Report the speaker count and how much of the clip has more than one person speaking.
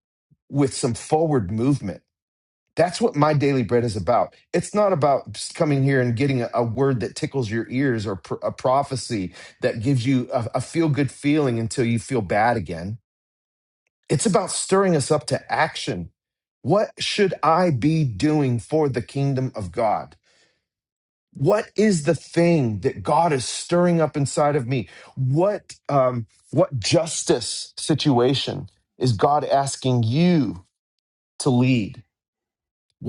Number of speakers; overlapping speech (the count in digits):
1, no overlap